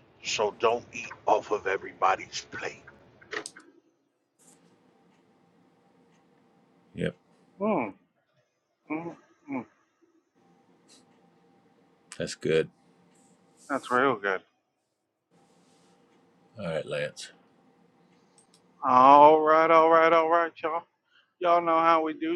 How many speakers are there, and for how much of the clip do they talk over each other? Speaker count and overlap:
three, no overlap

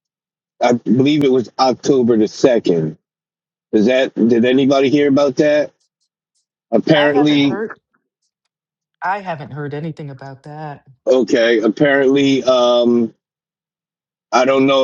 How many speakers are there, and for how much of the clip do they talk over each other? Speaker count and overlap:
two, about 5%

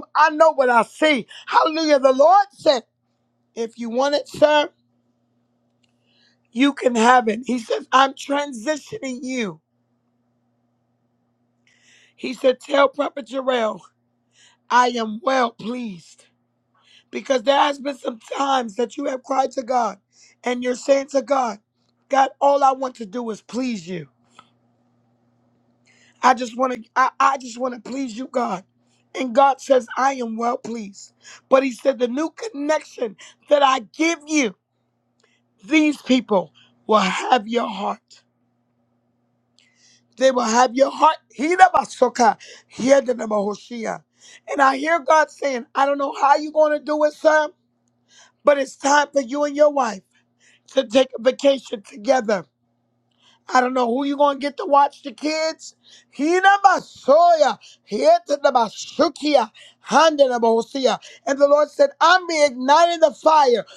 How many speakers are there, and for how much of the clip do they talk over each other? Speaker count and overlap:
one, no overlap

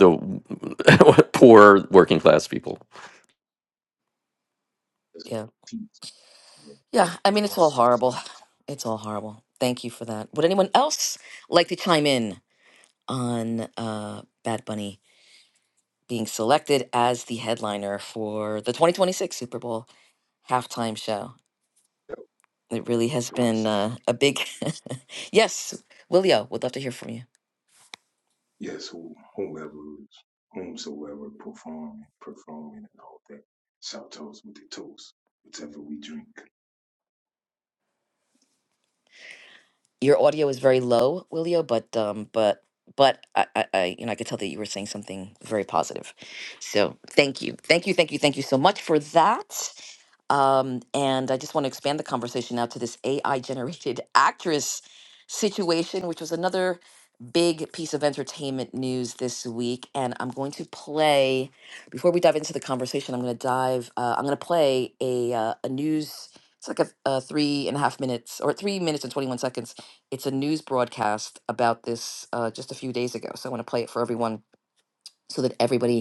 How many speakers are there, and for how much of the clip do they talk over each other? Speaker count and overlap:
three, about 3%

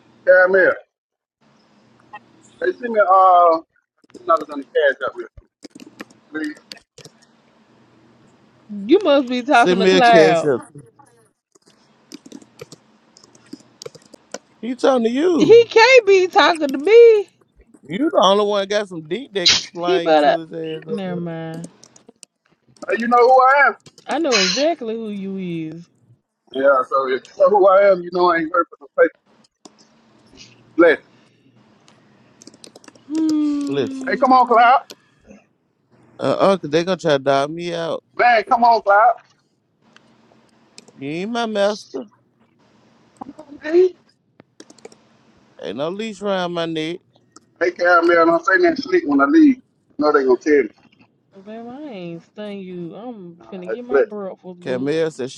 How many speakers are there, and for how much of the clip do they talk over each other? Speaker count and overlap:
three, about 6%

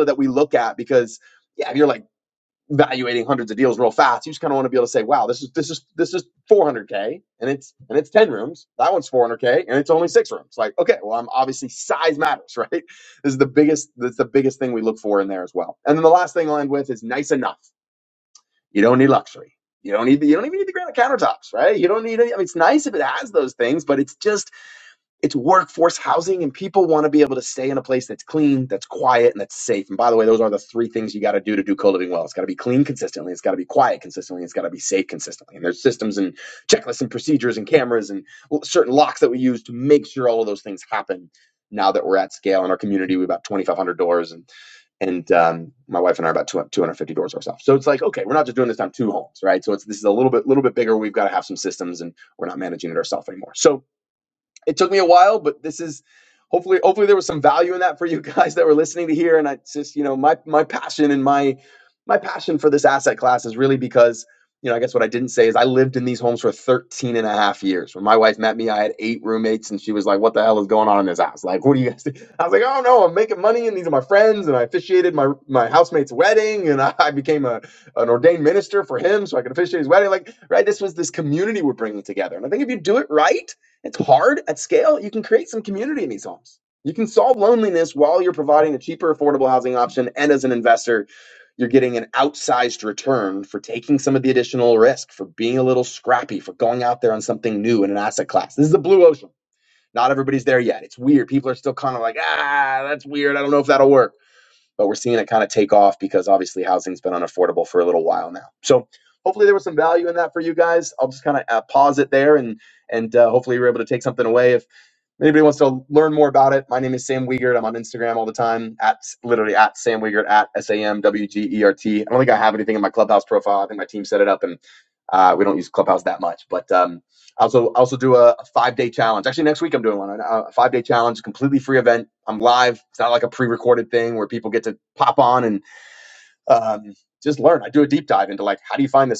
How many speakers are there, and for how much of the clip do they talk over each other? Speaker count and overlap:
one, no overlap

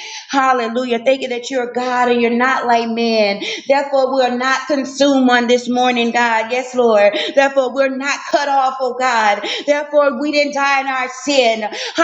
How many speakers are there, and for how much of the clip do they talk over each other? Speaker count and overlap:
one, no overlap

